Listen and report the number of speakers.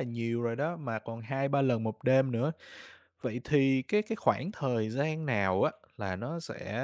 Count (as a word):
one